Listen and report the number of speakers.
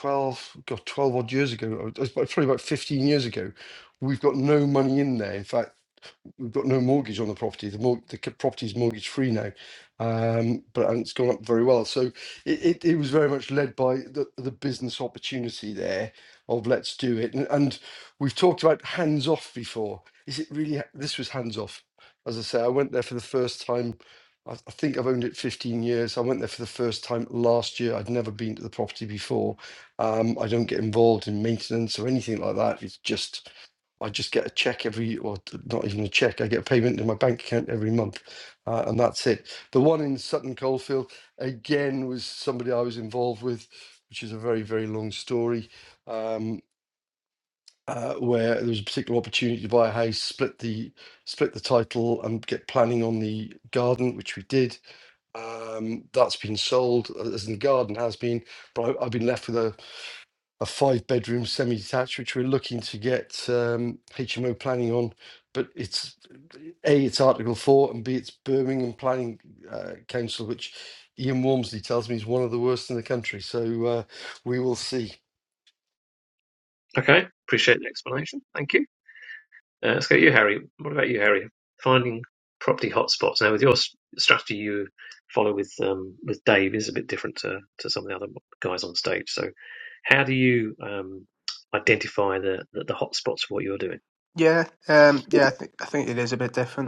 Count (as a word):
three